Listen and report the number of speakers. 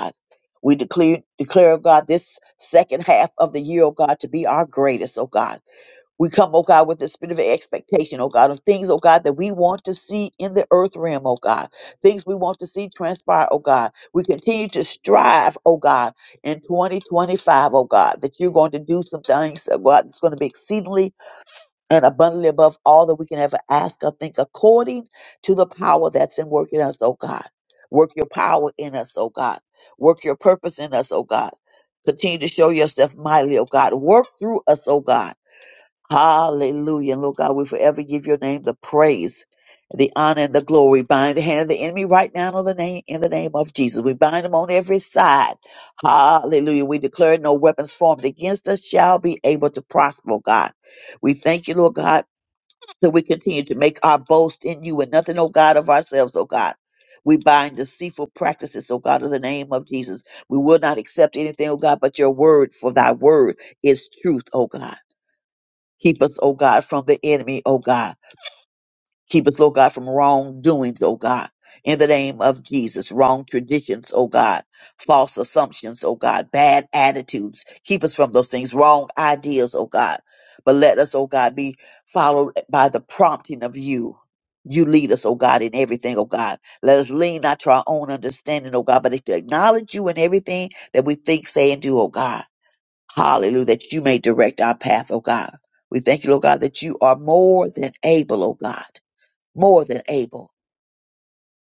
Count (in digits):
1